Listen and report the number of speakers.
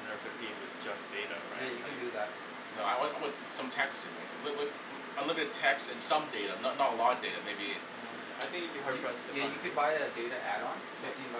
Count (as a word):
three